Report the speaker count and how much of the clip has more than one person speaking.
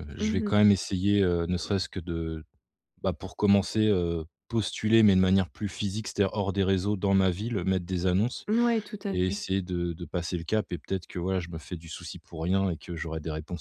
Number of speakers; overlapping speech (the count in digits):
2, about 4%